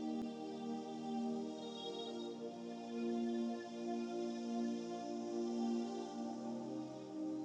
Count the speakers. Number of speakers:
zero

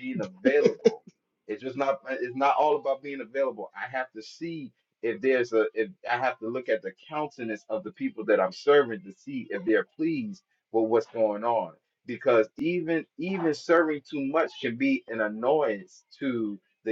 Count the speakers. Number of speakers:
one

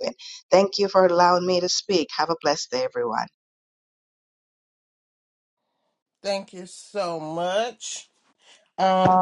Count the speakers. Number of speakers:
two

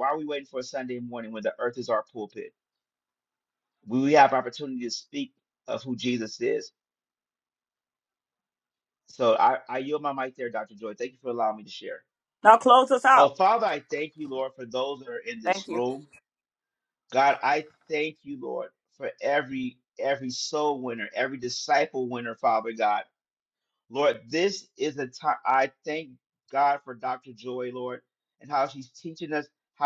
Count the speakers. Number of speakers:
two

